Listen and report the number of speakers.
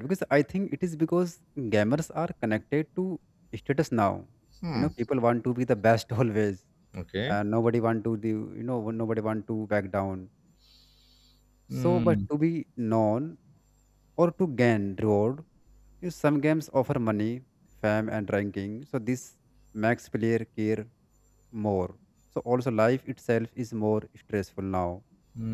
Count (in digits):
2